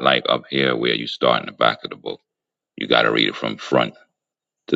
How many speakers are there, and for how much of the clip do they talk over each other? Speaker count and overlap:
one, no overlap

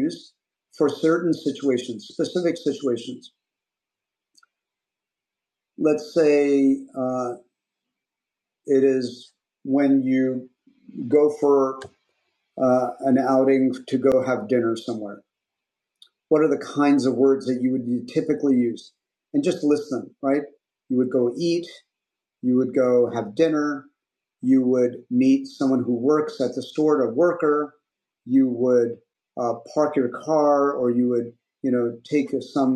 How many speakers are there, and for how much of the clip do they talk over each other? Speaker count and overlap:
one, no overlap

